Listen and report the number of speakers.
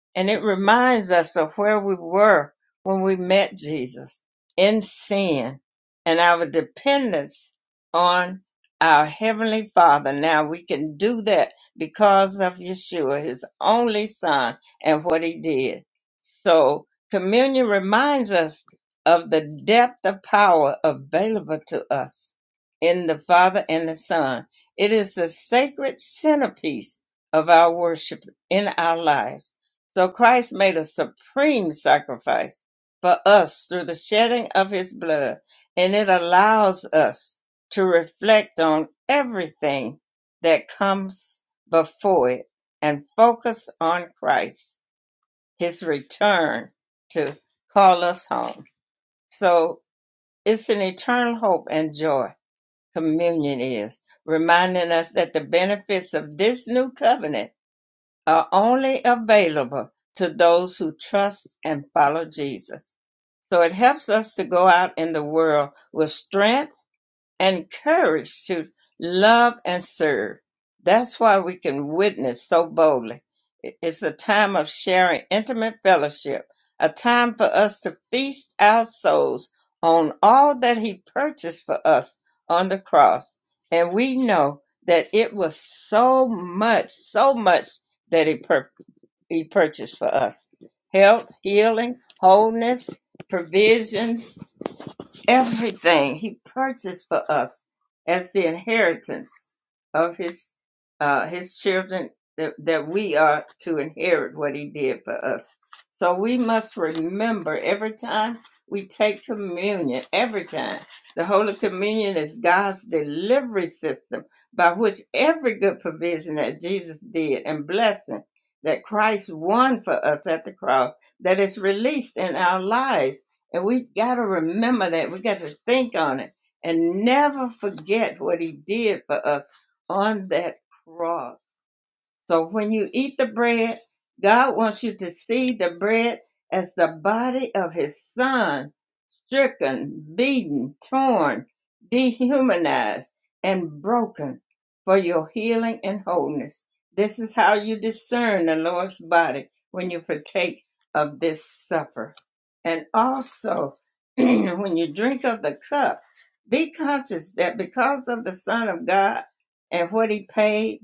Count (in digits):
1